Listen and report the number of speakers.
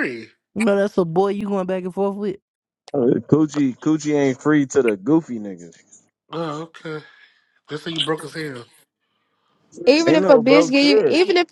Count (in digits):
4